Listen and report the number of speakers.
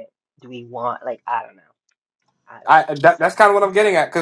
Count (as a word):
two